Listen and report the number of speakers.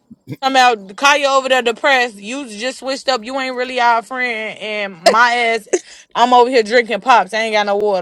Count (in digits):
1